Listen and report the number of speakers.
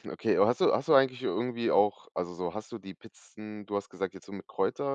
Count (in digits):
1